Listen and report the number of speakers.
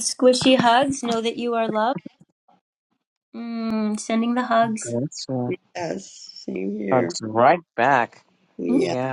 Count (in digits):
3